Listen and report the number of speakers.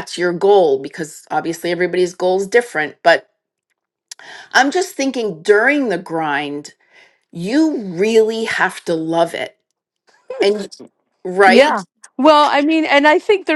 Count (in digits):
2